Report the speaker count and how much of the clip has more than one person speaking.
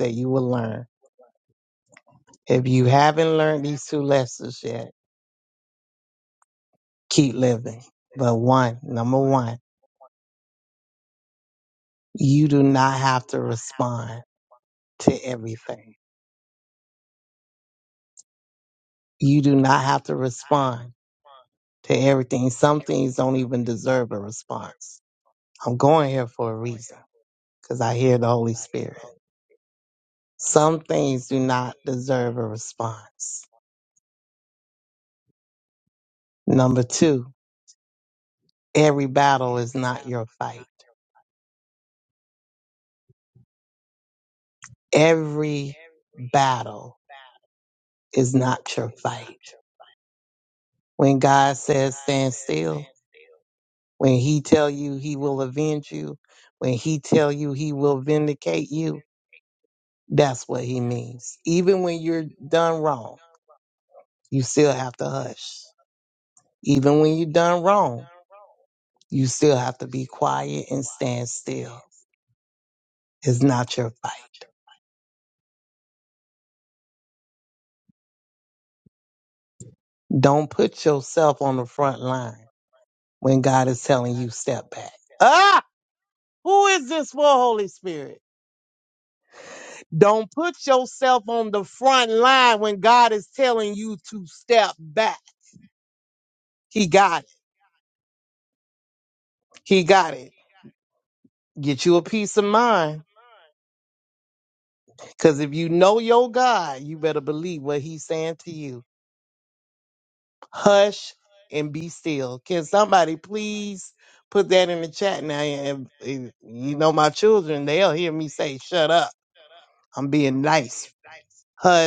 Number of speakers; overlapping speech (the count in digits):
1, no overlap